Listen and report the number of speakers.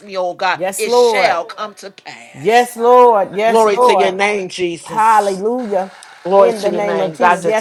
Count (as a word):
two